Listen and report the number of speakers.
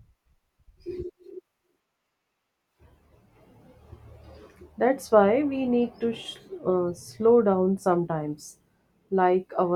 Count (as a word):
one